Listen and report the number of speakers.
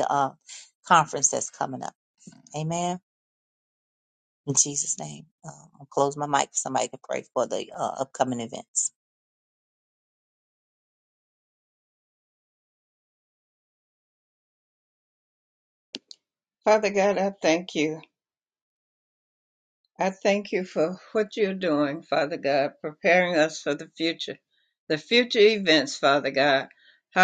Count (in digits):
2